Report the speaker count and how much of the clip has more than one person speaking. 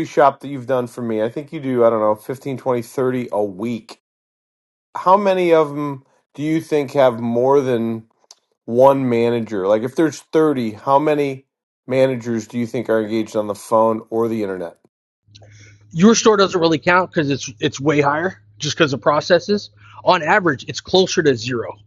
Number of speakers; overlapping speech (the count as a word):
two, no overlap